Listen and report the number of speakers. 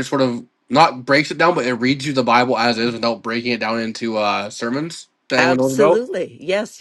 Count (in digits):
2